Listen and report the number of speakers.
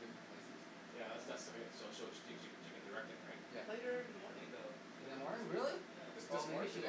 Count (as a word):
three